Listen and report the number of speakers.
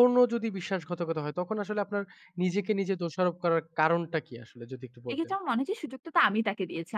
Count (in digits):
2